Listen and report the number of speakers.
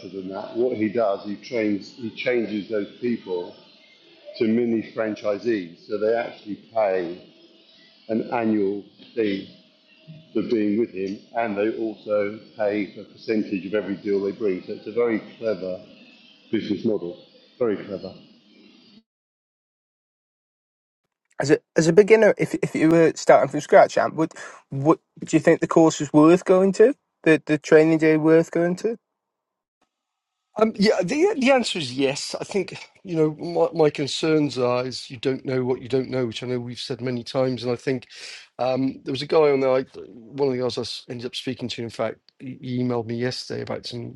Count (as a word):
three